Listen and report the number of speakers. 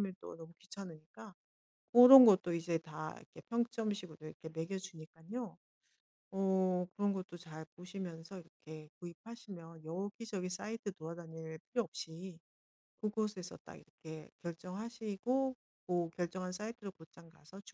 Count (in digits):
1